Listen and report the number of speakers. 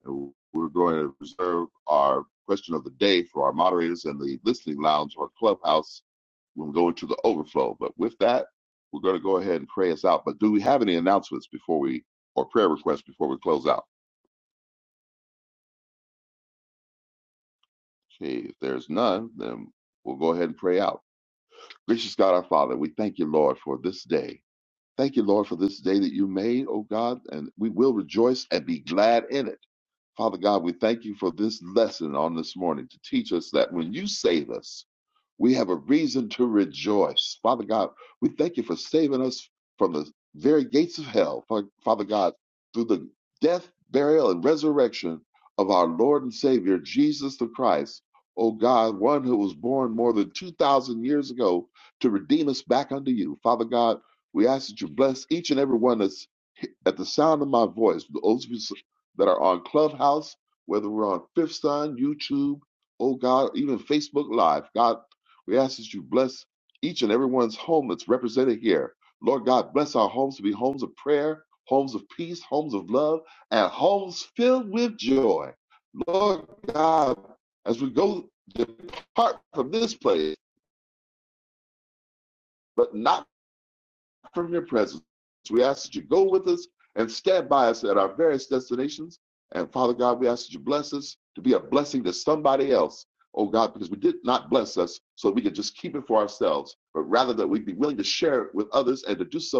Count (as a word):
one